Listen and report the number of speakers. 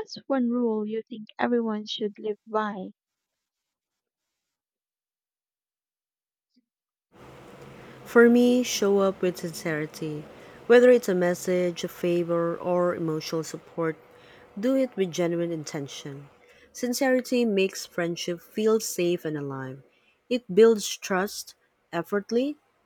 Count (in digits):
2